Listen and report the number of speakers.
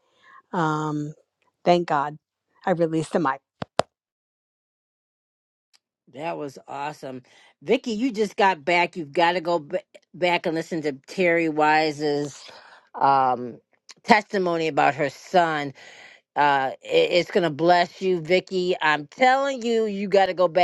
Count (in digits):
2